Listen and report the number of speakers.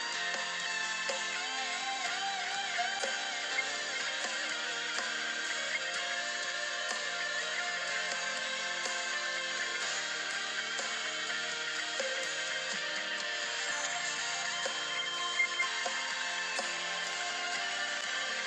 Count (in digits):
0